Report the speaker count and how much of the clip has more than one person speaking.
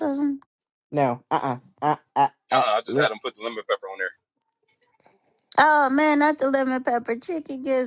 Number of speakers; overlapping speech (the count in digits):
3, about 7%